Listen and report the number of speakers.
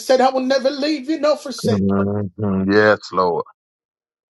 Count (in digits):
2